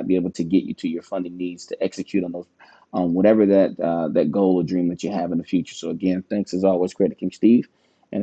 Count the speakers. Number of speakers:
one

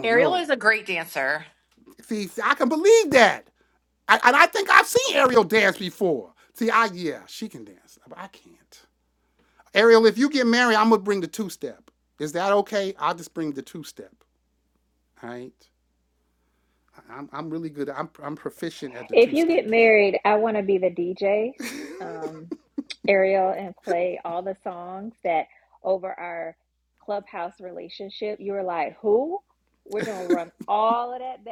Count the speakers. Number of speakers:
three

